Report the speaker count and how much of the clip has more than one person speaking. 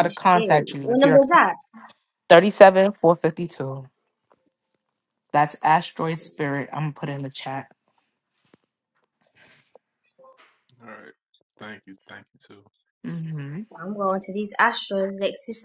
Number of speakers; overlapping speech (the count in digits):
3, about 8%